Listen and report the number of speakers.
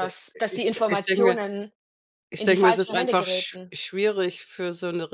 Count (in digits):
2